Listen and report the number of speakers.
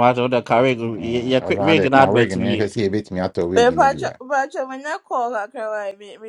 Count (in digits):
3